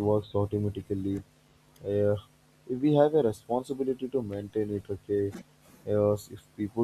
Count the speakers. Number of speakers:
1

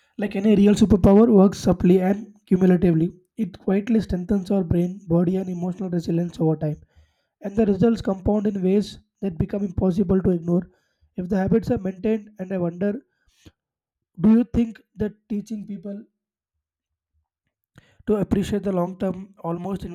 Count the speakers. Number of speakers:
1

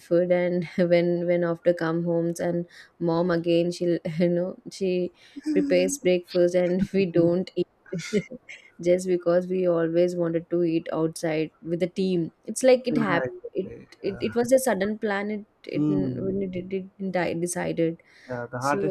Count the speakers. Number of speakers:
2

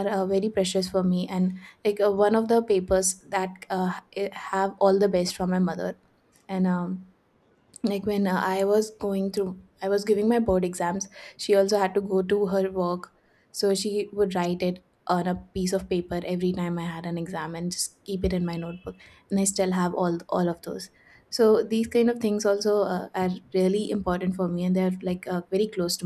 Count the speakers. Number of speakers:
1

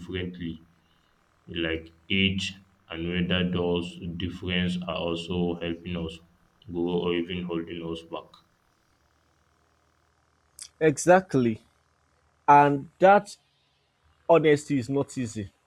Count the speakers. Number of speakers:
2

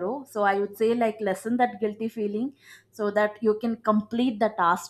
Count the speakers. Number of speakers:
1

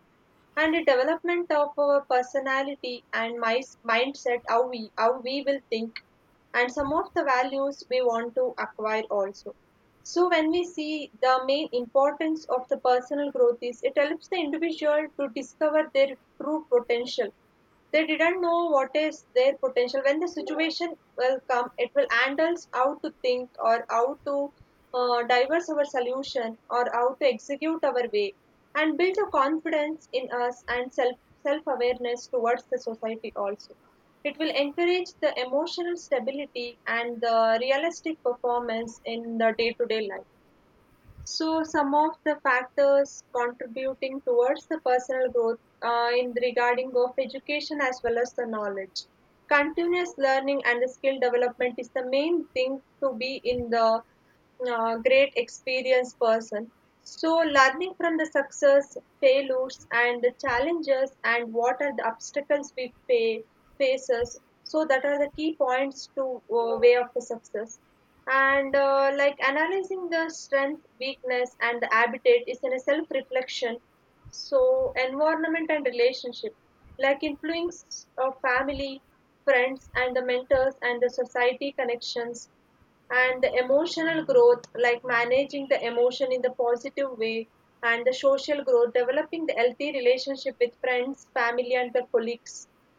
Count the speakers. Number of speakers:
1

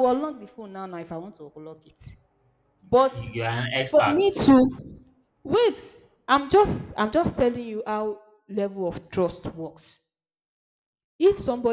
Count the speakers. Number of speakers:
2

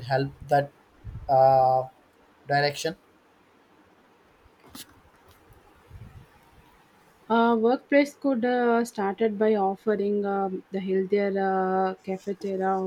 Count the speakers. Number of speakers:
2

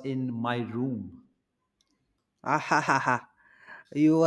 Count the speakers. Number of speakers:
2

